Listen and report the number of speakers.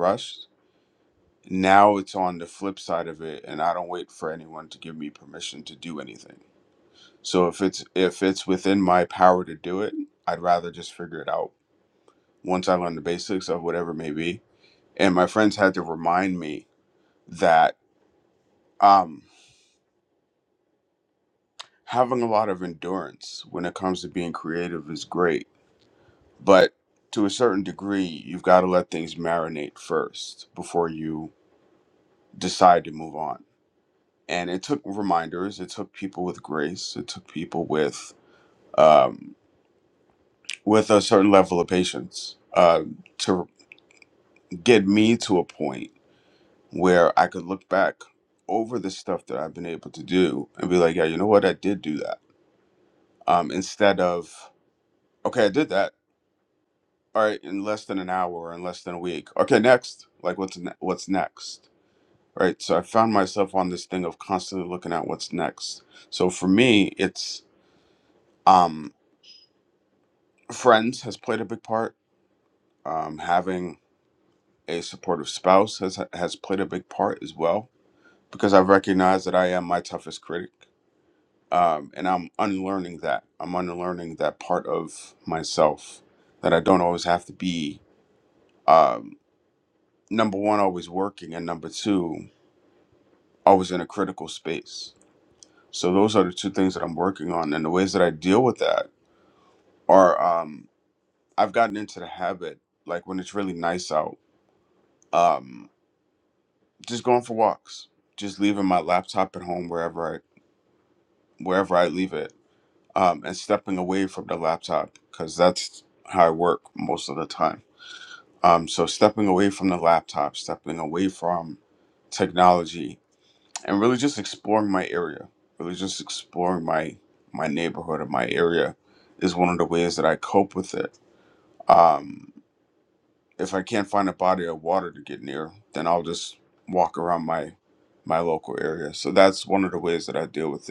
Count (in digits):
1